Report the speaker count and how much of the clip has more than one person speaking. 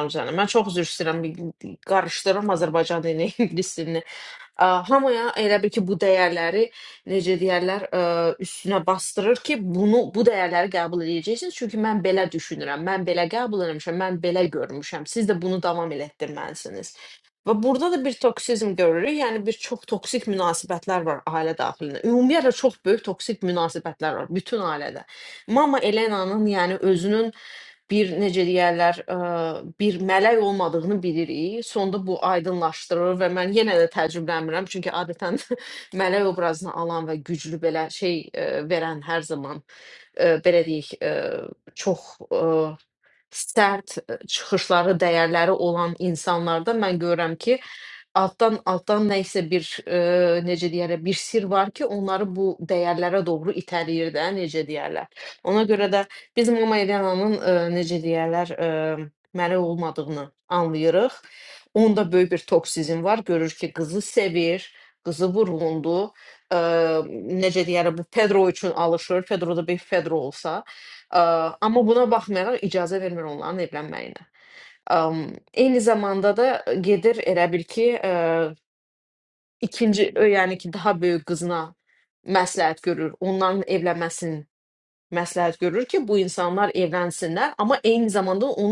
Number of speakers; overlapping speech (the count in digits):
1, no overlap